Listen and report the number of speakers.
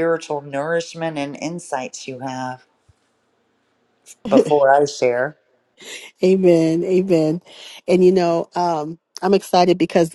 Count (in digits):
2